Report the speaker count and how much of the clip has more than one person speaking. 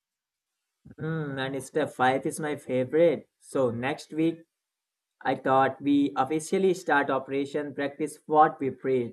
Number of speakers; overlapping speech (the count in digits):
1, no overlap